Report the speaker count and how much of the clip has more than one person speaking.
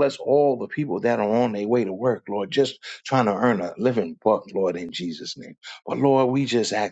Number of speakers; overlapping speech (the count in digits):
1, no overlap